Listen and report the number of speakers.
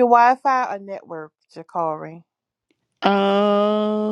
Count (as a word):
two